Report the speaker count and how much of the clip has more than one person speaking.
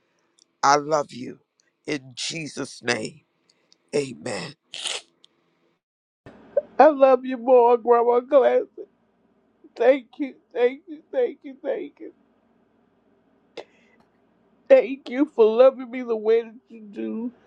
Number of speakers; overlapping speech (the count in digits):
2, no overlap